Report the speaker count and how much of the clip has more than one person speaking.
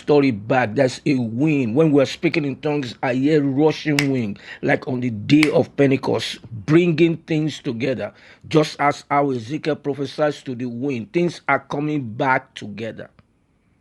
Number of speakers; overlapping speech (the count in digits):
1, no overlap